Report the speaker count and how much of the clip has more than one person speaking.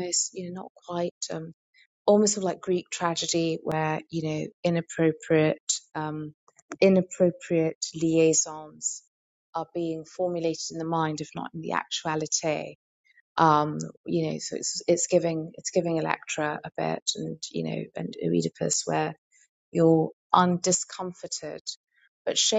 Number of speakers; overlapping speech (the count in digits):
1, no overlap